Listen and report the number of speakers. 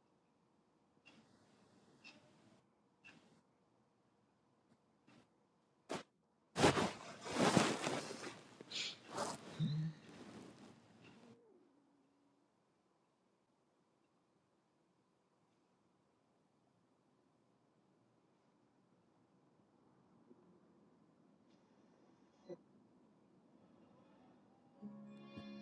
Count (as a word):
zero